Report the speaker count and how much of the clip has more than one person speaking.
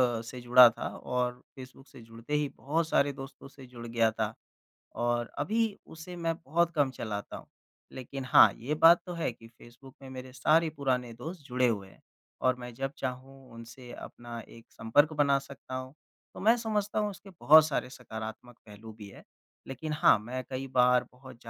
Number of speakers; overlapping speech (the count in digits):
1, no overlap